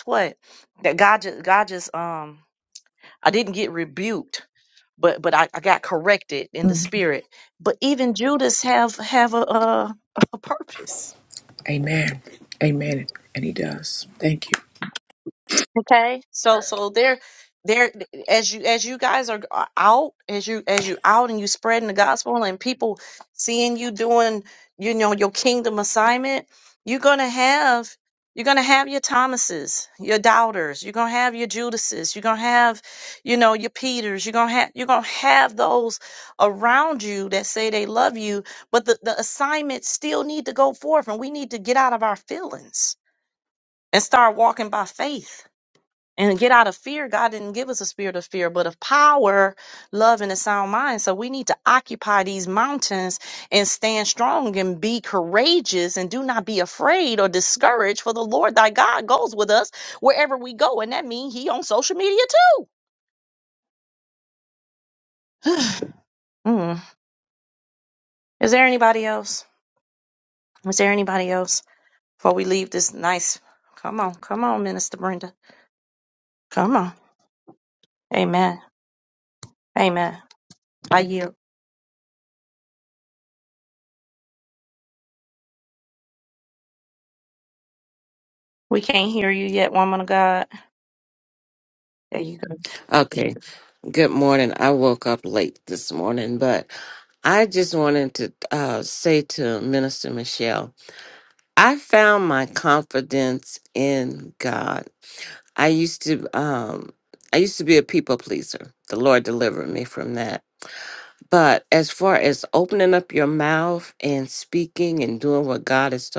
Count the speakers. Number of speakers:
3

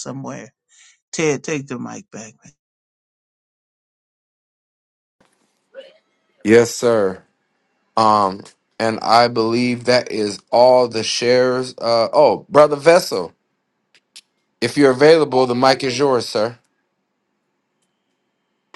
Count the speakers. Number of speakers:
2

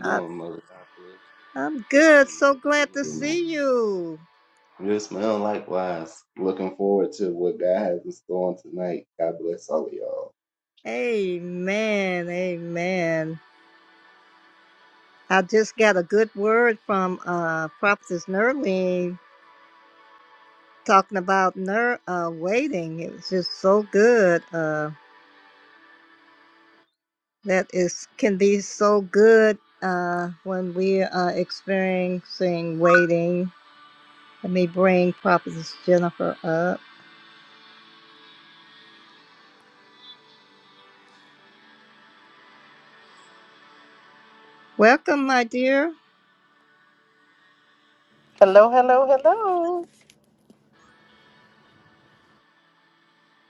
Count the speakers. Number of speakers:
3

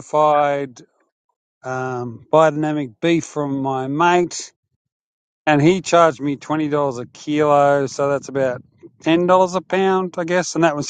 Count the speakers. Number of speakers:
1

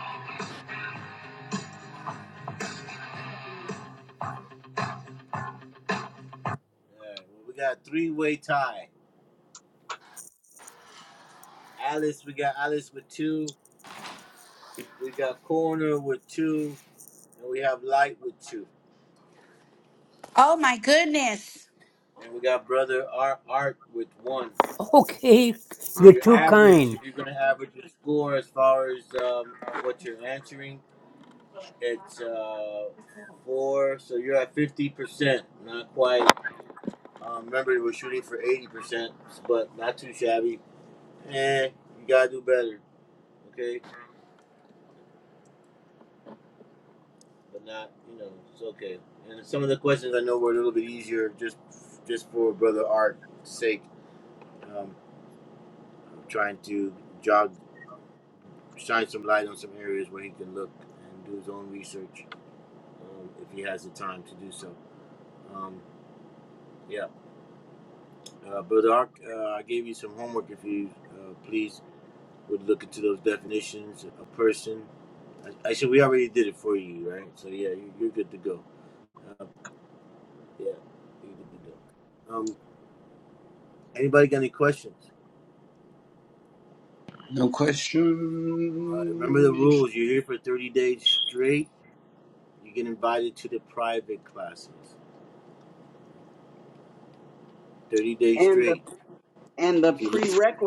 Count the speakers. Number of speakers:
5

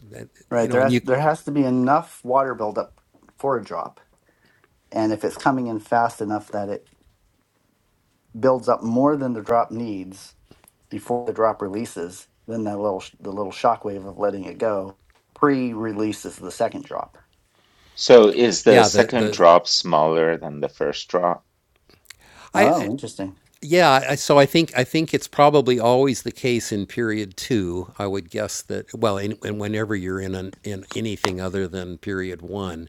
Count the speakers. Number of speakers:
3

